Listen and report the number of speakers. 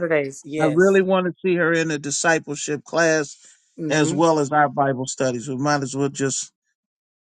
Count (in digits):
2